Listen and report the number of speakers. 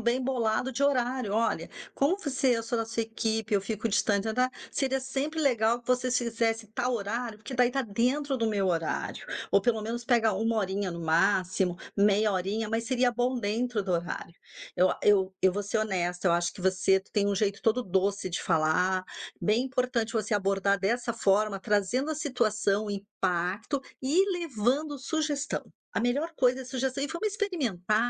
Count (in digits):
1